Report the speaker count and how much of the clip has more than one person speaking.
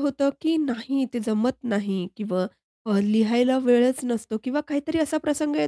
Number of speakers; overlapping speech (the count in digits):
1, no overlap